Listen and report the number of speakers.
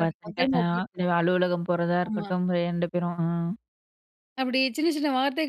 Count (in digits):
2